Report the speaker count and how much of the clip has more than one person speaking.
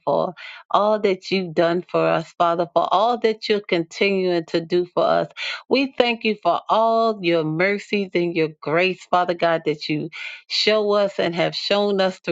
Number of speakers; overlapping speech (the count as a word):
one, no overlap